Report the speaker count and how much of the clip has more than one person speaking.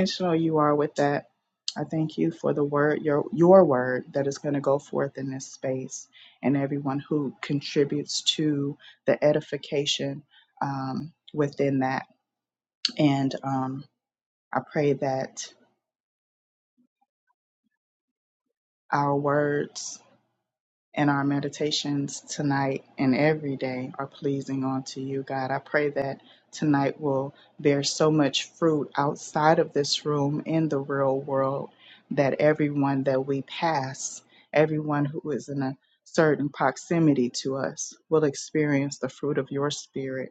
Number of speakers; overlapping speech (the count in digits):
1, no overlap